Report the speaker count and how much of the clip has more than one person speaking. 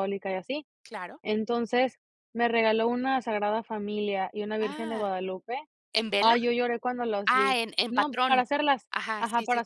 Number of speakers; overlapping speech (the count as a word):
two, about 20%